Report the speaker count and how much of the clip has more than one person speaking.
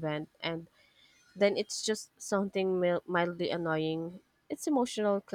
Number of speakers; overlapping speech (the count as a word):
one, no overlap